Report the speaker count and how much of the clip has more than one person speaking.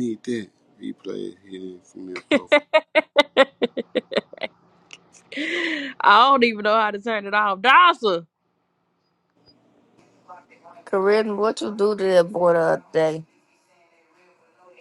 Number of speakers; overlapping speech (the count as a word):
three, no overlap